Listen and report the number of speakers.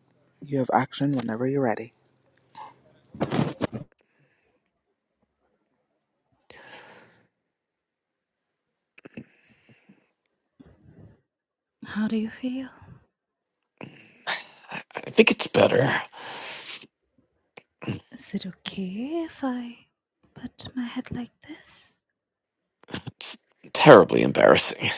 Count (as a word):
three